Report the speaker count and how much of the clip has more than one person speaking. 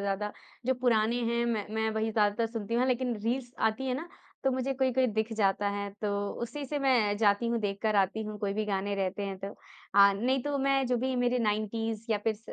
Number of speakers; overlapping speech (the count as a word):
one, no overlap